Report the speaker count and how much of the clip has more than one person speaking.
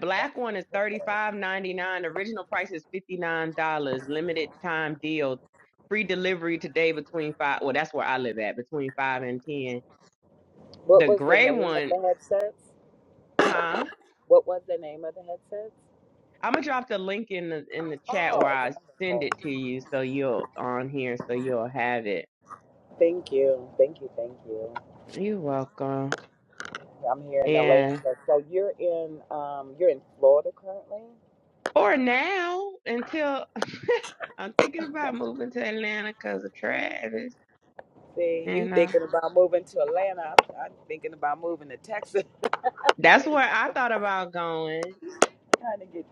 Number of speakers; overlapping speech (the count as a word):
two, about 8%